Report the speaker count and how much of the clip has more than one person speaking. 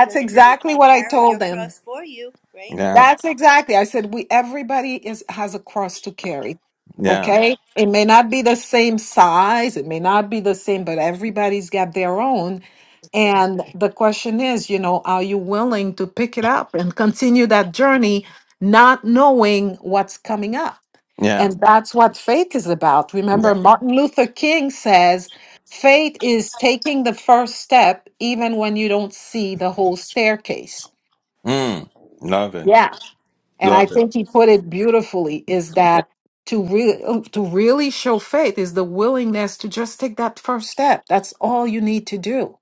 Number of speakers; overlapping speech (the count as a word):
three, about 8%